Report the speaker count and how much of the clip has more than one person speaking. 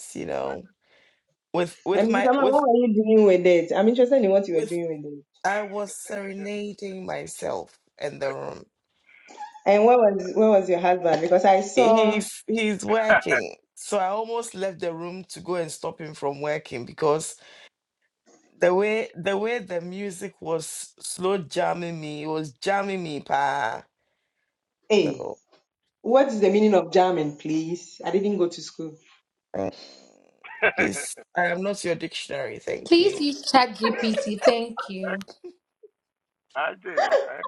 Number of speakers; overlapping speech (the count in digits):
4, about 6%